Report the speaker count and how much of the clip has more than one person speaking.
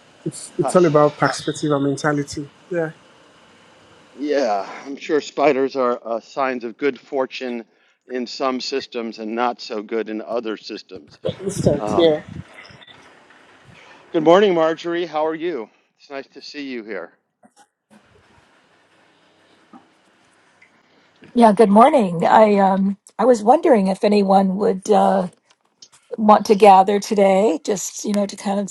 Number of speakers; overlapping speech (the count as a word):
three, about 2%